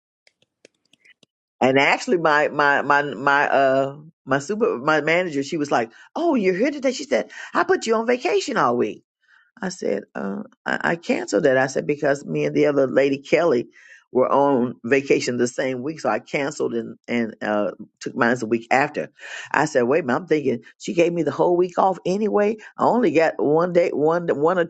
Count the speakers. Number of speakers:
one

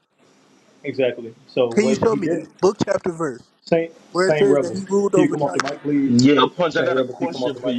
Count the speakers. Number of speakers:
three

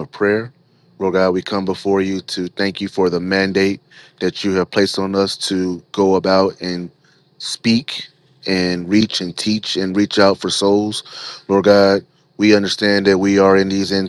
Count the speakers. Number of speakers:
one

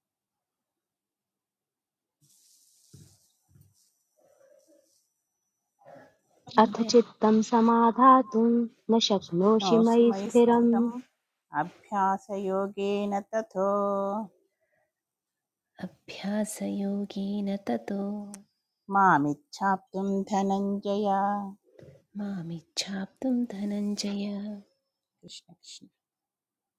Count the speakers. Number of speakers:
three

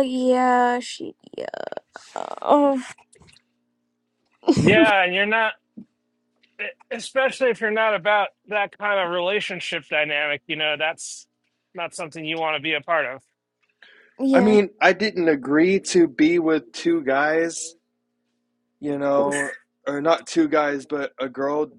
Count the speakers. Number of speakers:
three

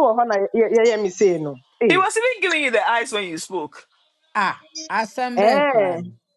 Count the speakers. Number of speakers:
three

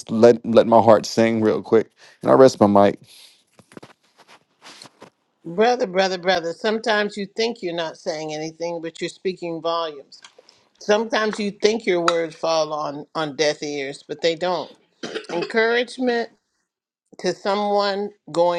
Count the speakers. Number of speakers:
two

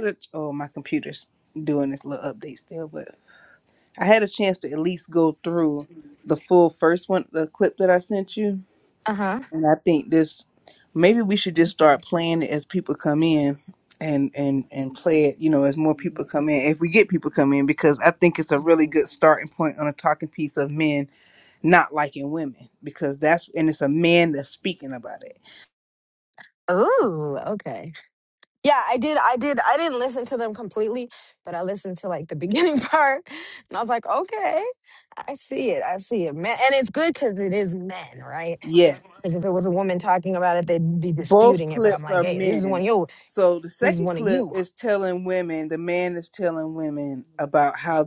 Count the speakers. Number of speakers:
two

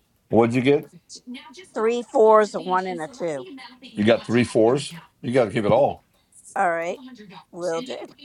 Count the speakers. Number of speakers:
two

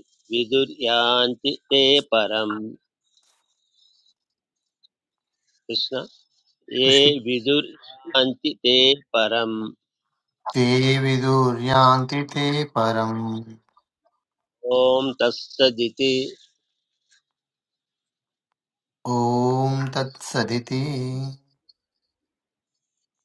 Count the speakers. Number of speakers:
two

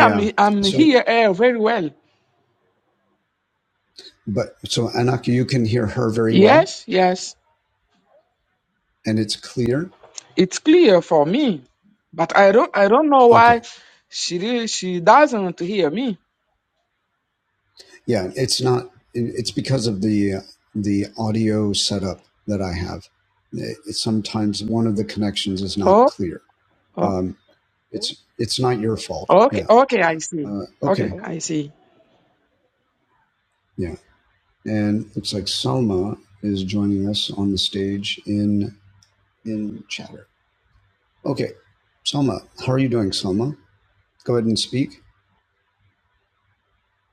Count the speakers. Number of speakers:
two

